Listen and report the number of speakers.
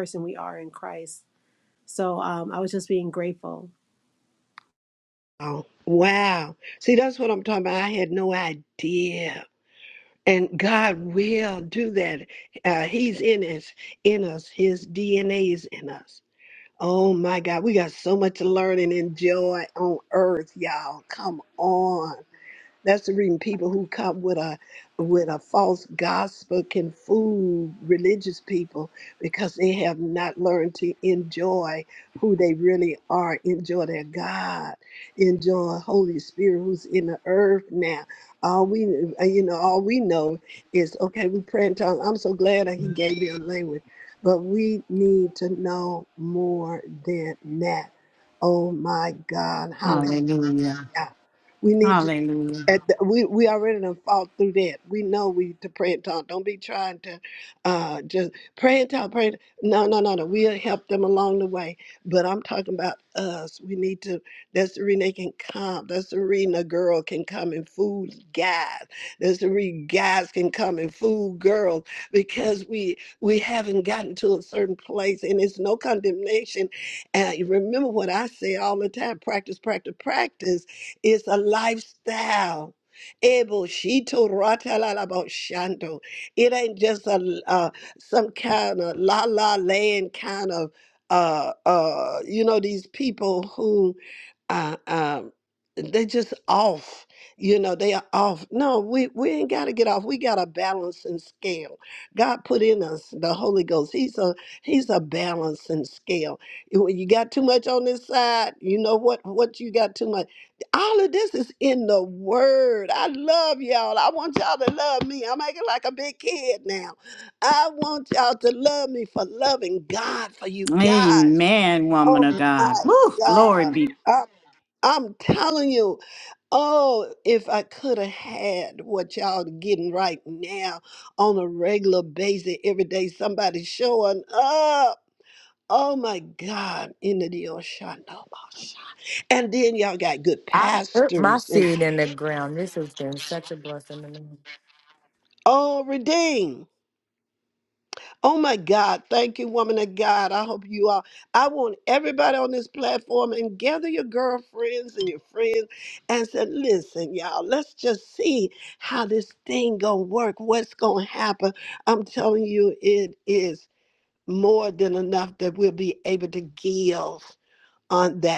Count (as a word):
four